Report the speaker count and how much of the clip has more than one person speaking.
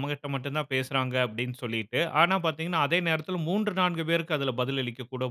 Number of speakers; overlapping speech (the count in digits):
1, no overlap